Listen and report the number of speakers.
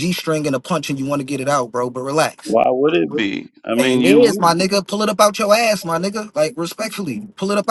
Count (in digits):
2